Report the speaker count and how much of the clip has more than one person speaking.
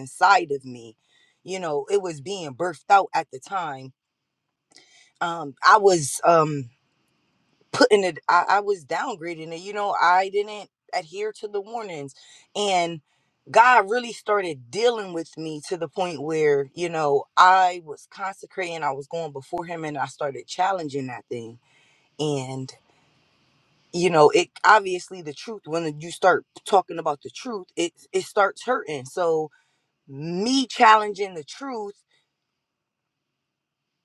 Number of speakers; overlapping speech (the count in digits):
1, no overlap